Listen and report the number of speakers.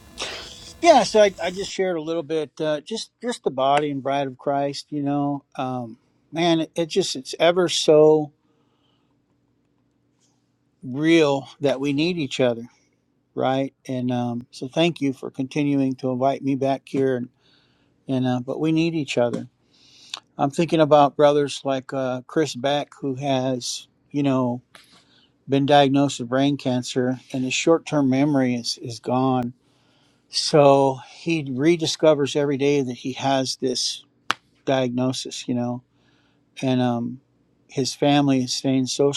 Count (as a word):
one